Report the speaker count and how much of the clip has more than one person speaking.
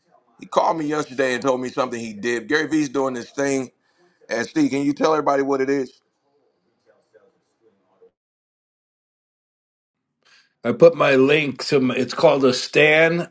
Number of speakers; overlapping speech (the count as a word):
two, no overlap